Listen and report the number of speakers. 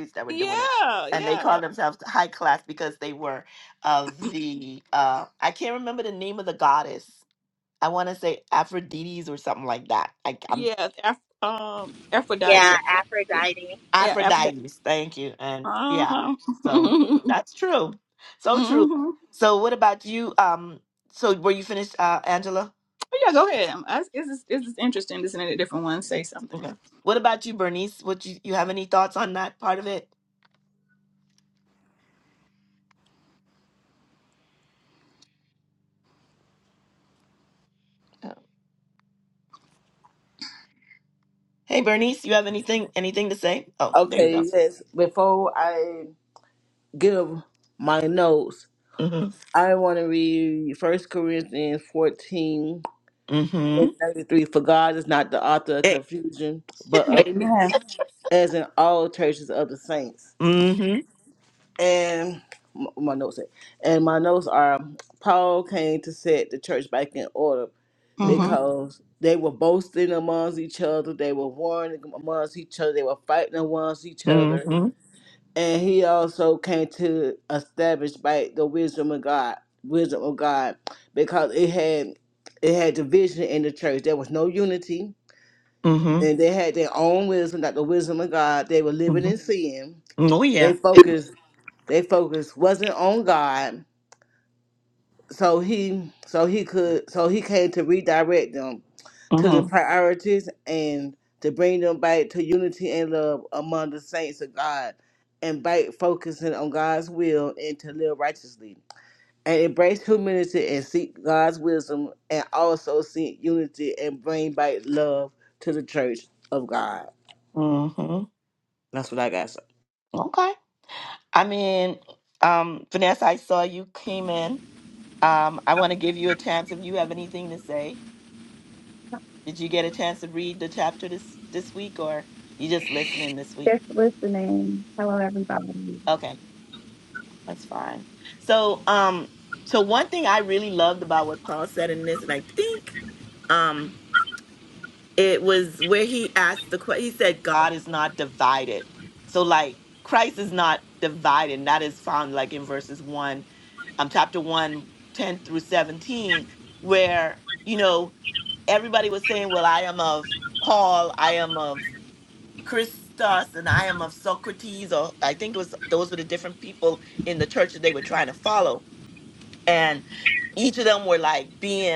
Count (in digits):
5